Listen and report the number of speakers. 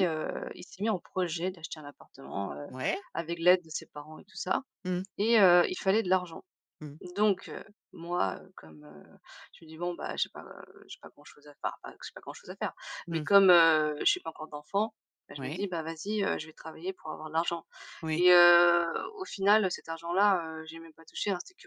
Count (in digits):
2